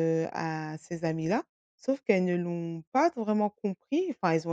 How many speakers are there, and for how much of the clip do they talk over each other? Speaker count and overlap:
1, no overlap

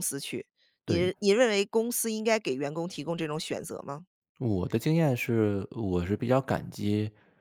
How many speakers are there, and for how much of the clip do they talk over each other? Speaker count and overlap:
2, about 3%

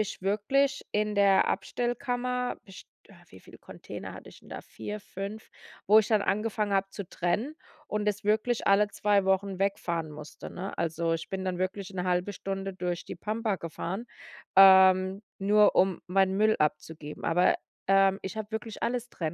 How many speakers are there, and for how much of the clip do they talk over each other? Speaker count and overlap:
1, no overlap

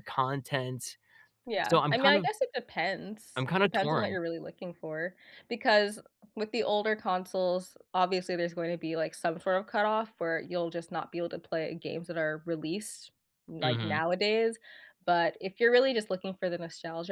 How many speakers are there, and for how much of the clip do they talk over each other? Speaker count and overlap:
2, about 9%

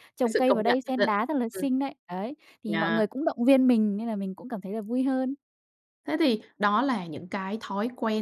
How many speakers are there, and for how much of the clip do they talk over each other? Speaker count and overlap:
2, about 17%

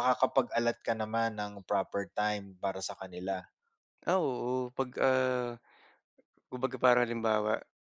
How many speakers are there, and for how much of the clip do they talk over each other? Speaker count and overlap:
2, no overlap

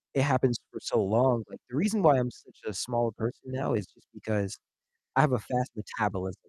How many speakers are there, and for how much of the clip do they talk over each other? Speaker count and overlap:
1, no overlap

